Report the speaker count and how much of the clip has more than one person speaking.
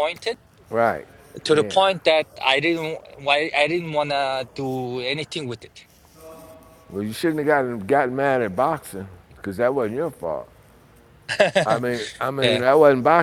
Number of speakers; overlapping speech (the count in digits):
2, about 4%